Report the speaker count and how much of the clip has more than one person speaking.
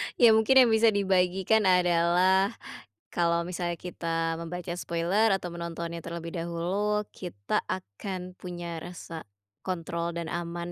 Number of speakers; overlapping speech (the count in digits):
1, no overlap